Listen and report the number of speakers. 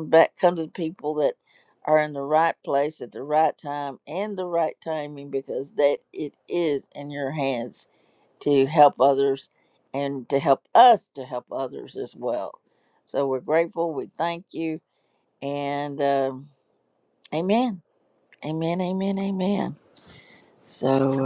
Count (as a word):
one